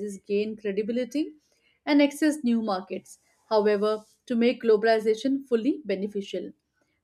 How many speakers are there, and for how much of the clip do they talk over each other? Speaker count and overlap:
1, no overlap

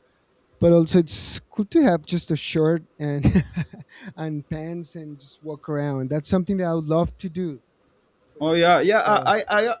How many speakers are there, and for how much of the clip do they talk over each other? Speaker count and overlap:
2, about 9%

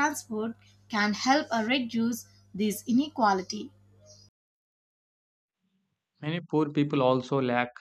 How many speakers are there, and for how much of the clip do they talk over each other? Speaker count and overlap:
2, no overlap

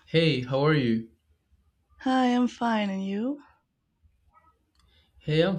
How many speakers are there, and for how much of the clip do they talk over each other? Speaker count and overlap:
2, no overlap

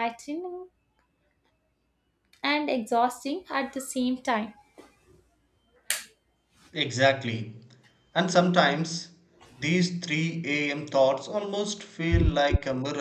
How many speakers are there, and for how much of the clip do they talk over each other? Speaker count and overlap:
2, no overlap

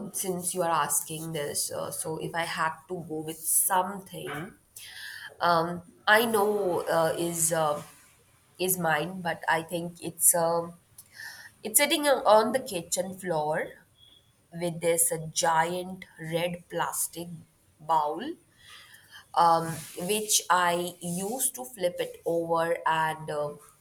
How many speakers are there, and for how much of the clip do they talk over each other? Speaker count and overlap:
1, no overlap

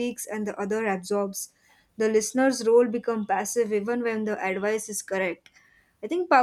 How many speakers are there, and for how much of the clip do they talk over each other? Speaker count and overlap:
1, no overlap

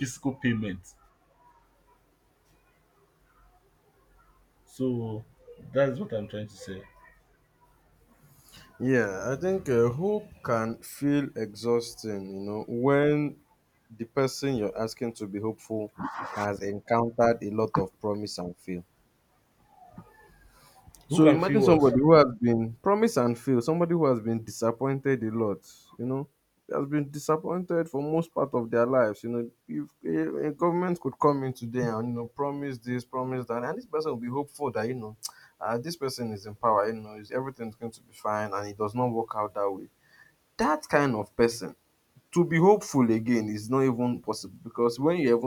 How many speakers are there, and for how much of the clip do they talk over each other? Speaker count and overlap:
2, about 2%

